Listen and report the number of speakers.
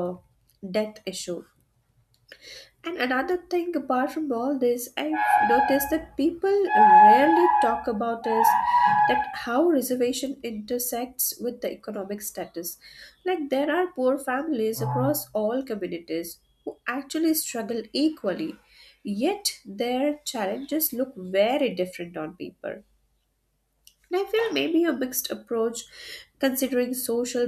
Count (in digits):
1